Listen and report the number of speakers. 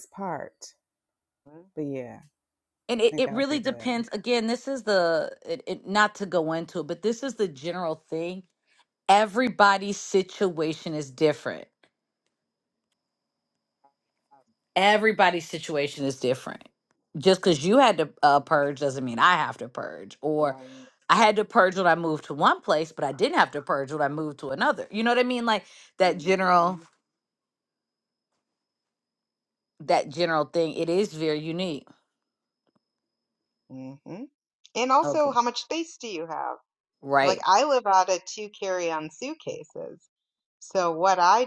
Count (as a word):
three